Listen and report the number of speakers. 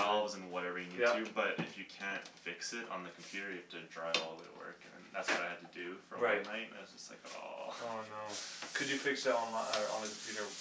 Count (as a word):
two